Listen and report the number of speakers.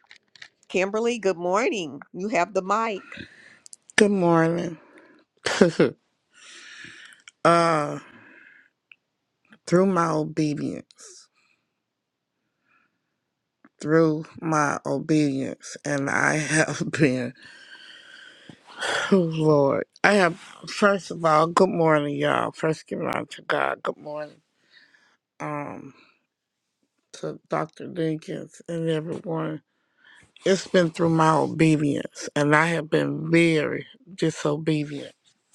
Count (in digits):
2